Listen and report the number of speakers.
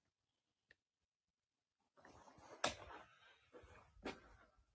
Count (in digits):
0